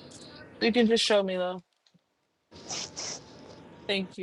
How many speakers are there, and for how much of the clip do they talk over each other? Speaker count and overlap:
1, no overlap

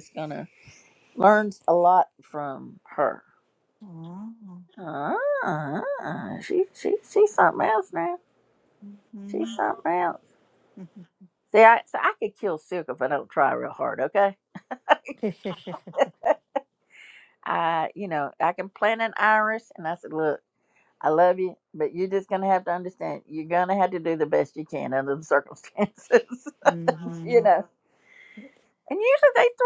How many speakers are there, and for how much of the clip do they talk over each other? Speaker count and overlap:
2, about 1%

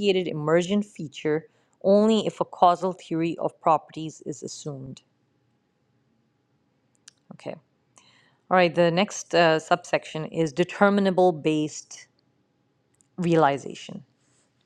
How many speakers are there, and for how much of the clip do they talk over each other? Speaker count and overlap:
1, no overlap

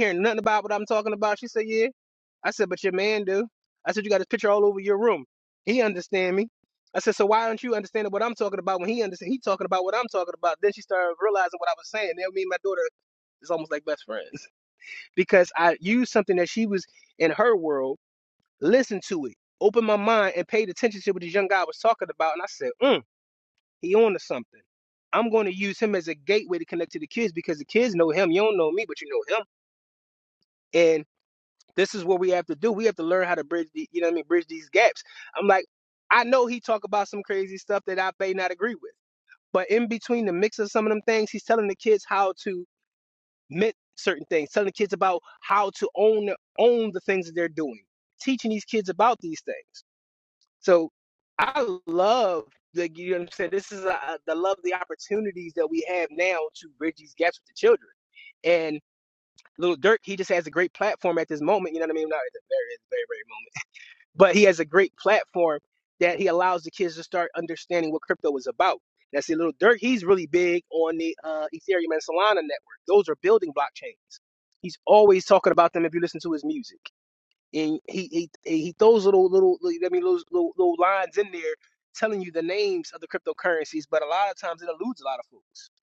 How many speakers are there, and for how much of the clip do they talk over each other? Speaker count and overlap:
1, no overlap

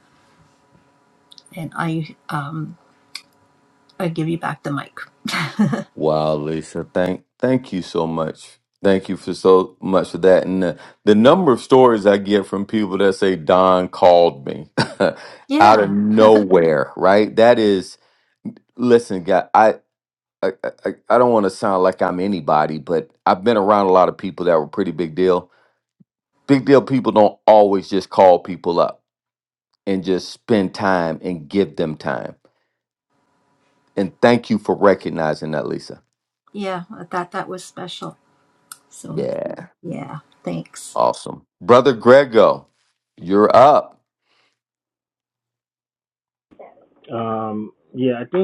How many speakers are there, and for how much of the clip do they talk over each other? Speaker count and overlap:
3, about 1%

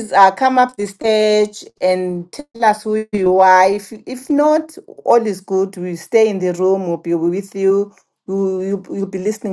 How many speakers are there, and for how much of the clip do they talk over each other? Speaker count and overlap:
1, no overlap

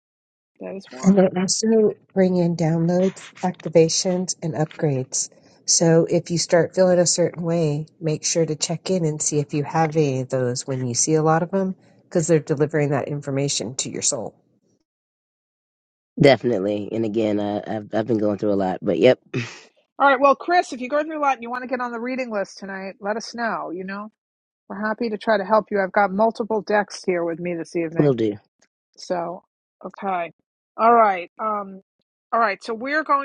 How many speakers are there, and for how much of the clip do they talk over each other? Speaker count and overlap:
3, about 1%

